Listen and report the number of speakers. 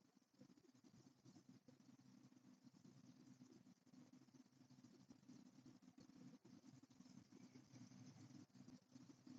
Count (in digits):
0